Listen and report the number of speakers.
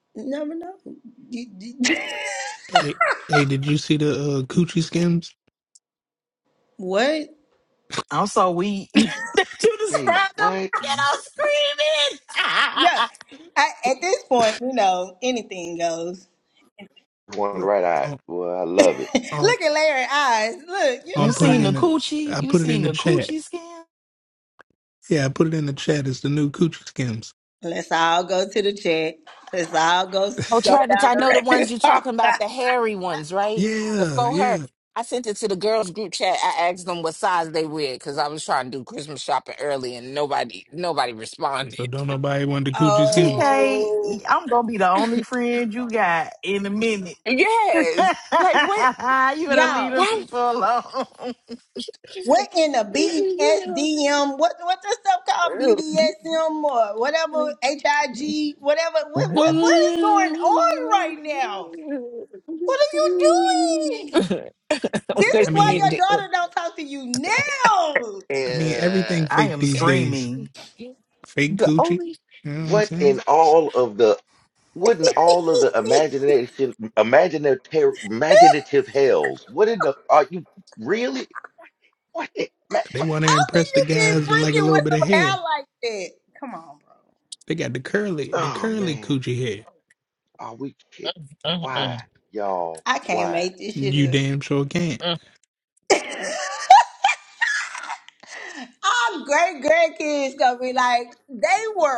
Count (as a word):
five